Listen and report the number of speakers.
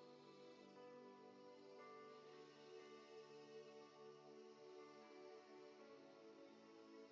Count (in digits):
0